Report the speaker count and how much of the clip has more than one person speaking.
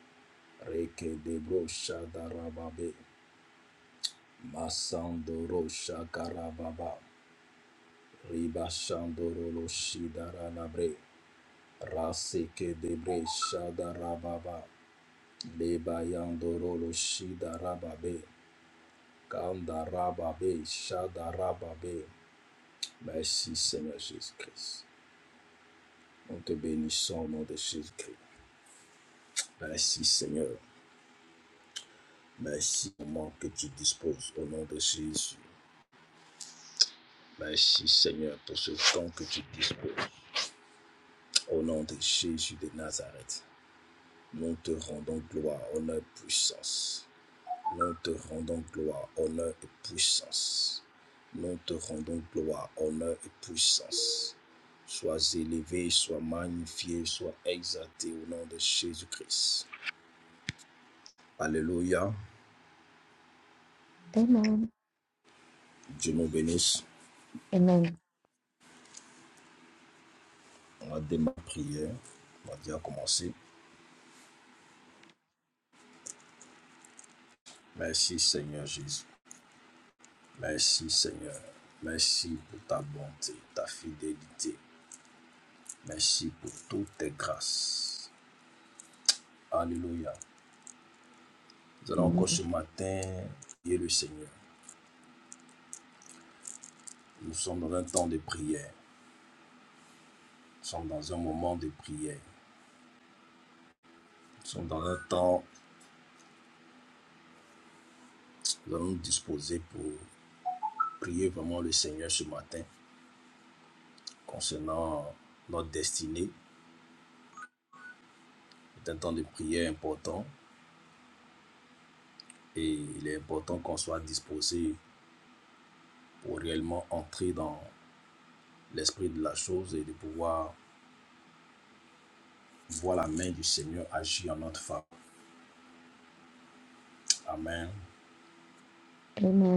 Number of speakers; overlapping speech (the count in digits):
2, under 1%